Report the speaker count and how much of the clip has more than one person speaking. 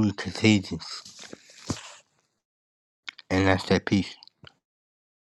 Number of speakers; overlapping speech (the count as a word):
one, no overlap